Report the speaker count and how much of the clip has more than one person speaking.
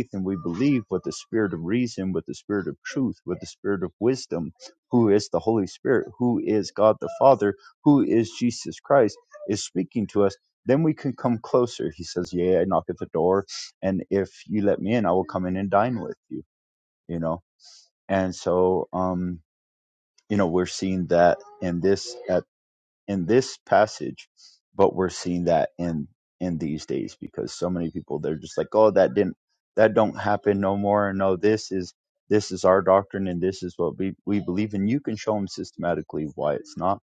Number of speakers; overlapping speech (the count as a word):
one, no overlap